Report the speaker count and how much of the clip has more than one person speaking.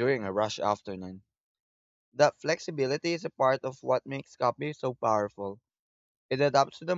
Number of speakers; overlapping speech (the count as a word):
one, no overlap